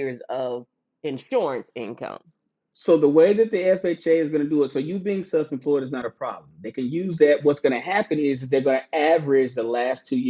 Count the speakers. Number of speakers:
2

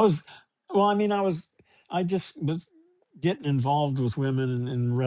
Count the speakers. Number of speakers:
1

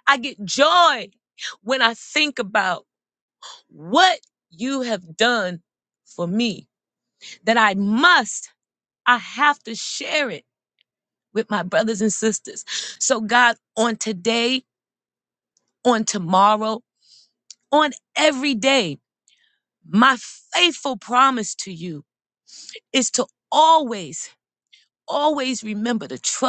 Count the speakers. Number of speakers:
1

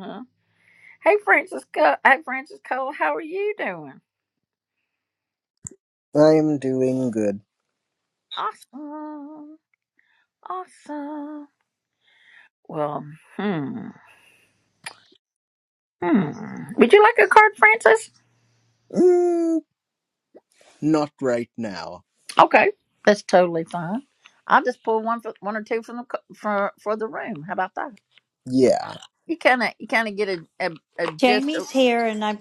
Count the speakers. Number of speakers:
3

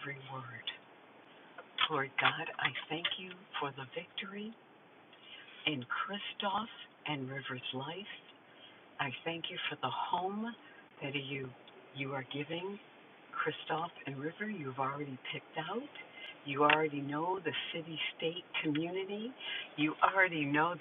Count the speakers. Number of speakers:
1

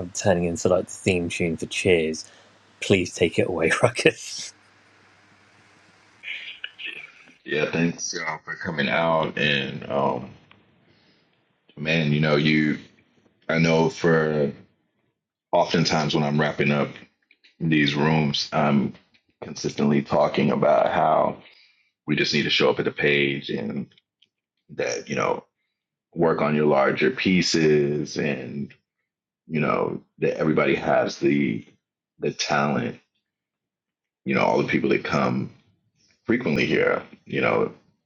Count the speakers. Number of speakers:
2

